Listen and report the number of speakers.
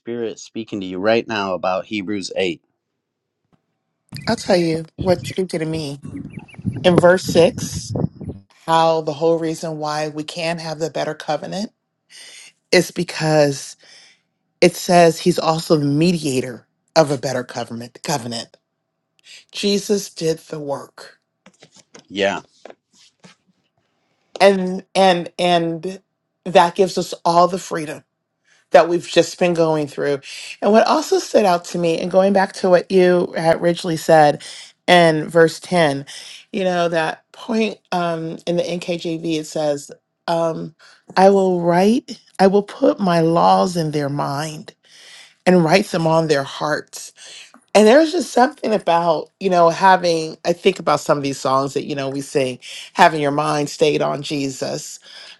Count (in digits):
2